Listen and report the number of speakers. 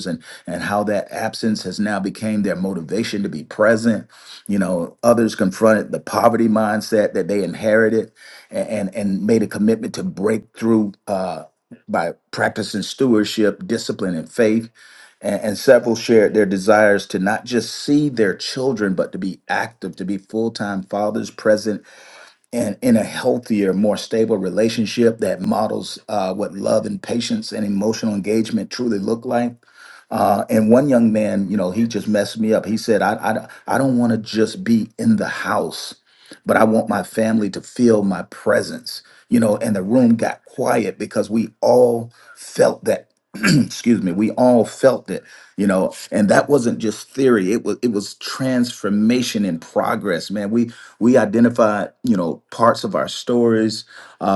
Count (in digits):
1